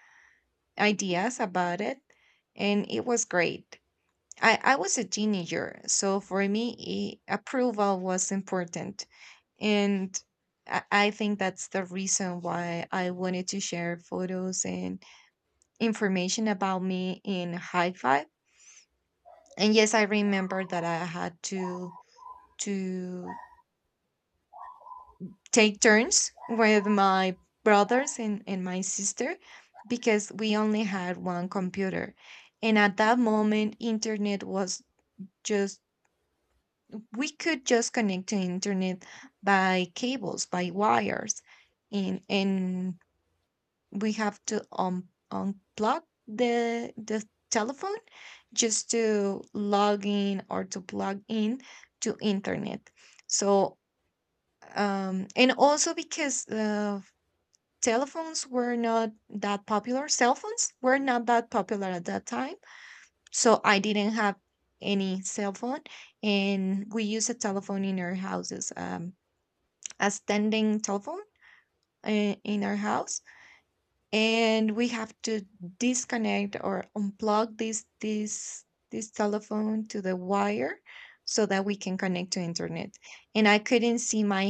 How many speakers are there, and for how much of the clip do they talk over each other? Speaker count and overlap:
1, no overlap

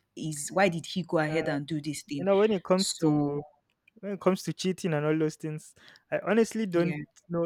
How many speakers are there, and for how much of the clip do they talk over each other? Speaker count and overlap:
2, about 14%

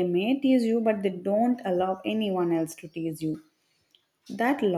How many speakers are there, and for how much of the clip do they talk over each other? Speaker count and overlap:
1, no overlap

